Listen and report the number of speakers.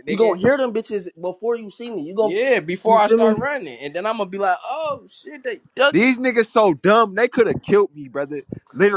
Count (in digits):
3